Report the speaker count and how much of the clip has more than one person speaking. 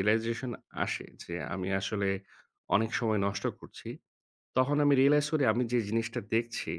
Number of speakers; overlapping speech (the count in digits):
1, no overlap